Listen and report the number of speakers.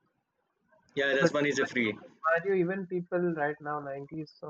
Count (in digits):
2